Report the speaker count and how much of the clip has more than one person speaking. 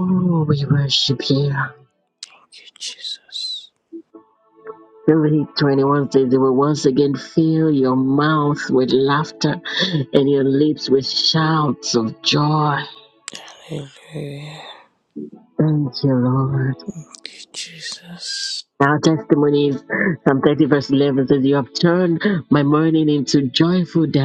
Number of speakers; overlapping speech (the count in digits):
2, no overlap